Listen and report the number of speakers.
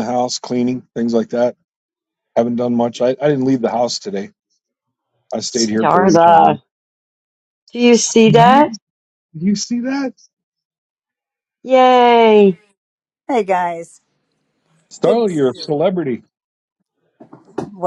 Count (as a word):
three